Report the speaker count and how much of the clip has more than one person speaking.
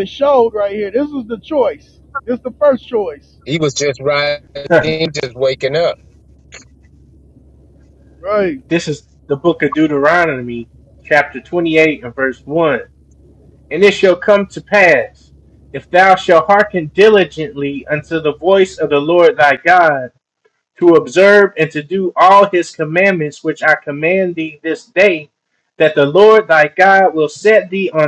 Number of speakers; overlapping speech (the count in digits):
3, no overlap